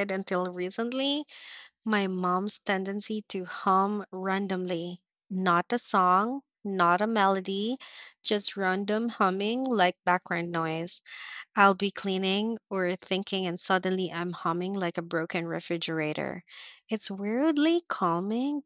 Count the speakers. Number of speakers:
one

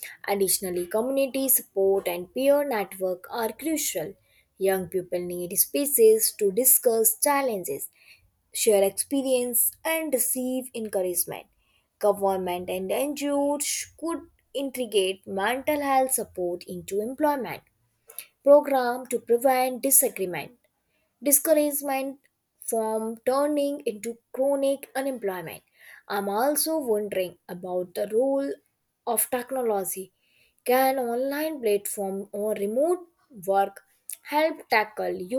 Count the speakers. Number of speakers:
one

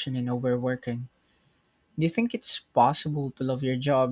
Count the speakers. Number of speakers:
one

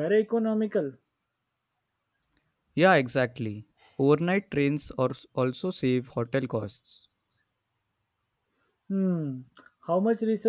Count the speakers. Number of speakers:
two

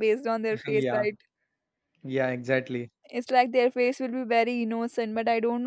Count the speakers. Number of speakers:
two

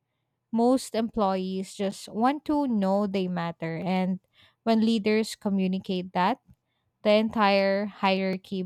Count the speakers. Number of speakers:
one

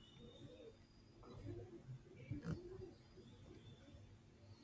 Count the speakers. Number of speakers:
zero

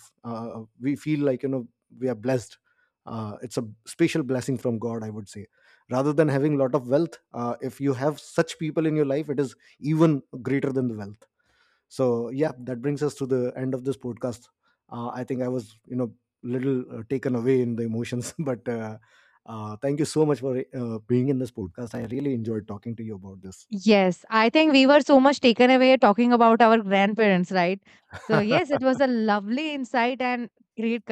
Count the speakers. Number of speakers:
two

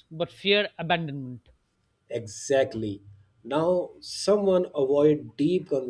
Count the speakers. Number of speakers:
two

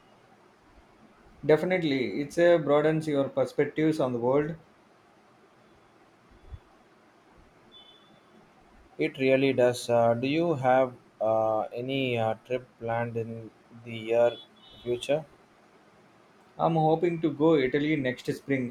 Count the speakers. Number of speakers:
two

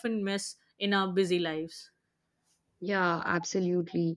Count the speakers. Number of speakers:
two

